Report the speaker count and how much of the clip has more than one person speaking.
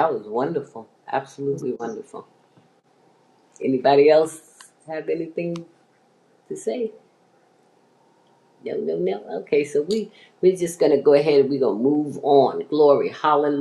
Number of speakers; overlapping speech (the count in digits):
1, no overlap